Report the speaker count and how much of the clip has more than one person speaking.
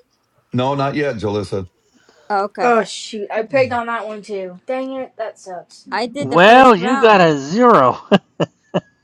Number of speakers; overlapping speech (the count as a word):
four, about 13%